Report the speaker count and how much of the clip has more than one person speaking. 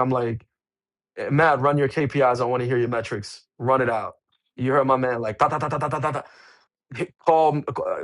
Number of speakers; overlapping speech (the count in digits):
1, no overlap